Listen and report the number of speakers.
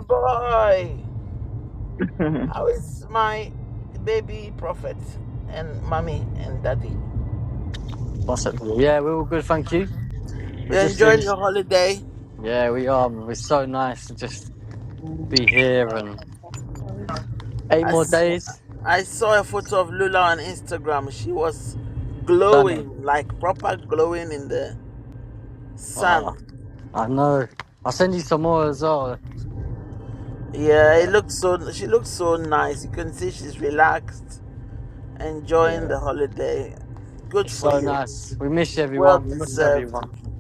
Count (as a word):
three